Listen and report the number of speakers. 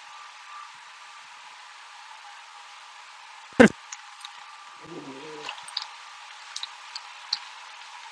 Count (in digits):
0